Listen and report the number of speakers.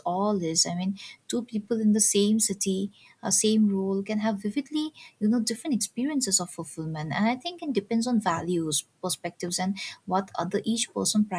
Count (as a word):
one